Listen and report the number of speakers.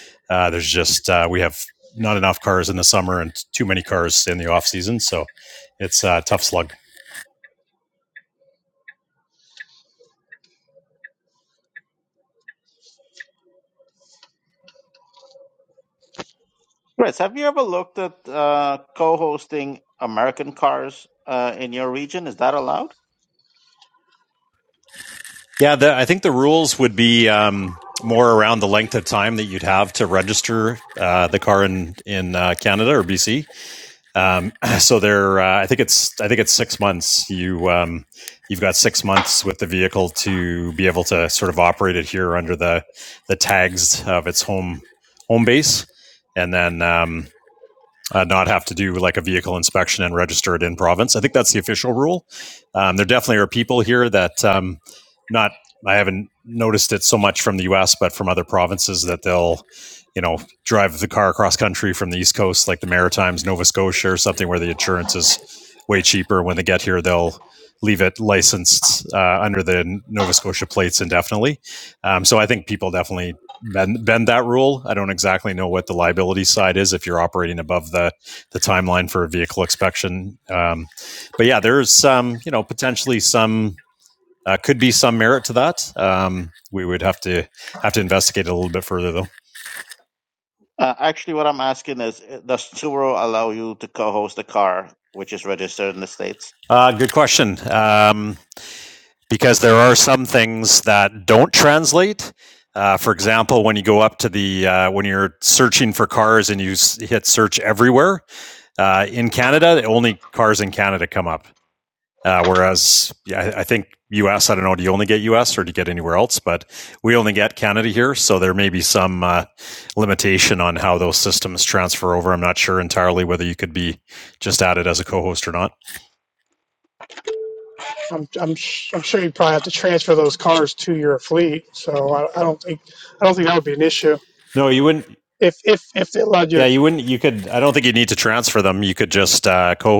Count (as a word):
three